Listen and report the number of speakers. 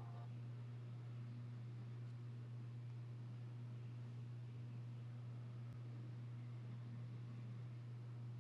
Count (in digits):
0